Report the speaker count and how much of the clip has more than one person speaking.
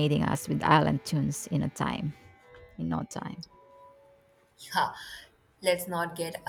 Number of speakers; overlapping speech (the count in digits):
2, no overlap